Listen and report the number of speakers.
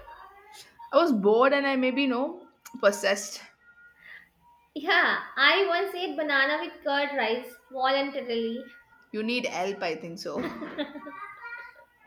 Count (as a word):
two